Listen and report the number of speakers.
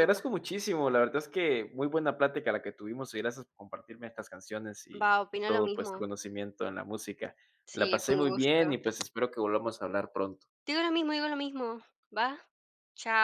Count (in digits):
2